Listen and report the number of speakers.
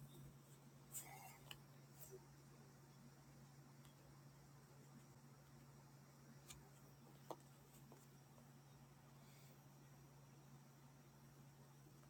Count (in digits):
0